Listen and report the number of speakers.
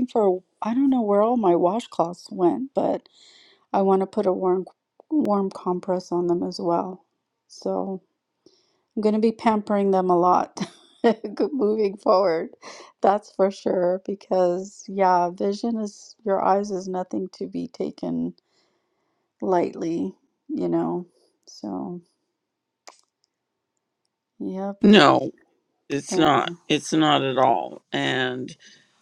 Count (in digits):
2